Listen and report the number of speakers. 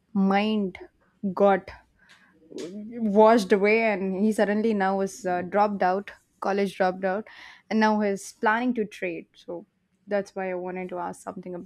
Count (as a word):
one